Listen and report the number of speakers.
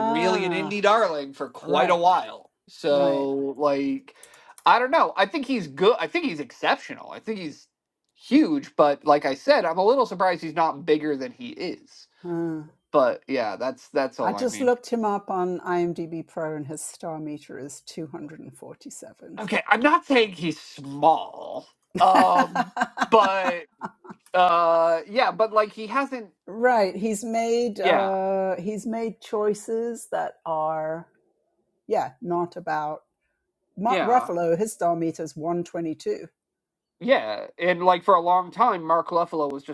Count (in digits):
2